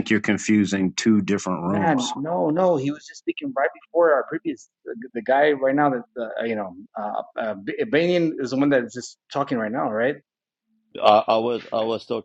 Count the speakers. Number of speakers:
3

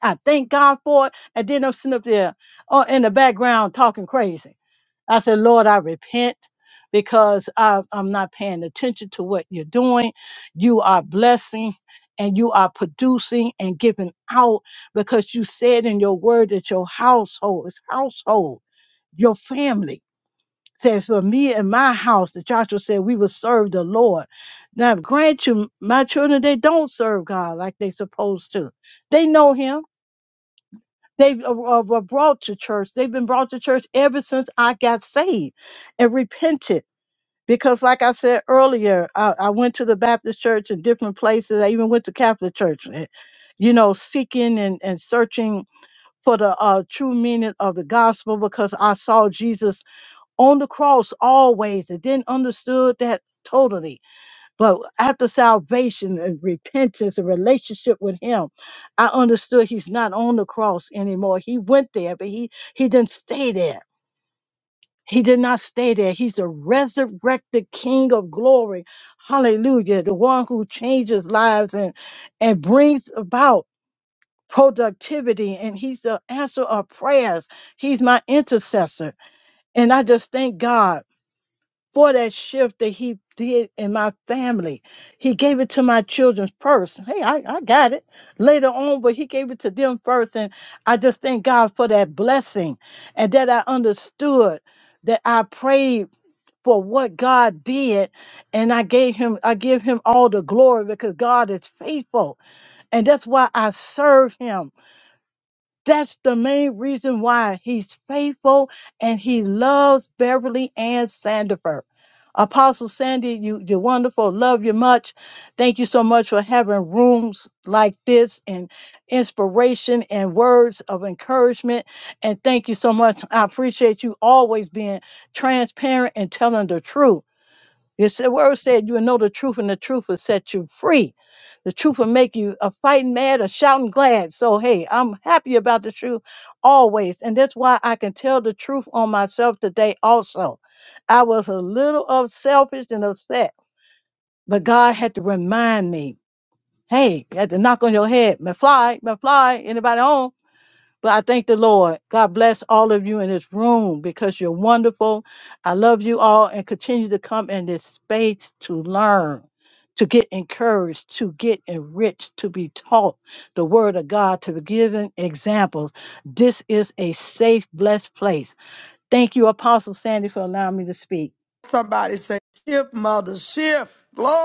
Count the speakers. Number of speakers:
2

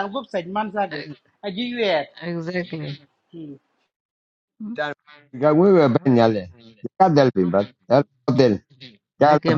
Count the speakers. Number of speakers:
3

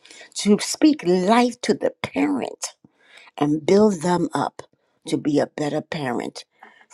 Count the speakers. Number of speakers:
1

